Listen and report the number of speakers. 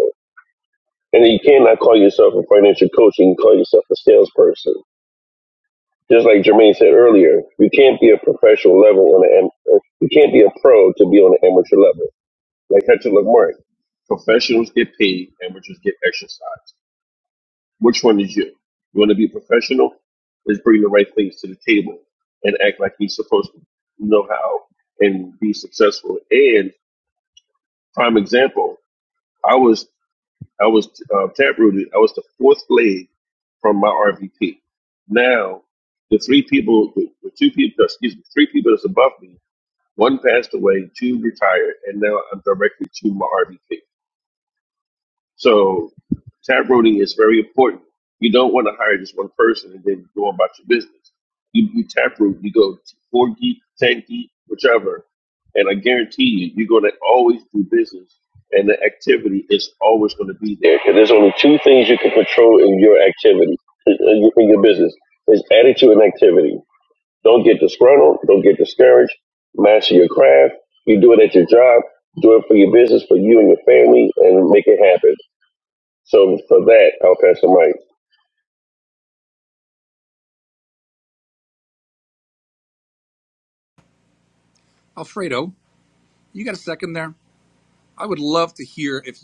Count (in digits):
2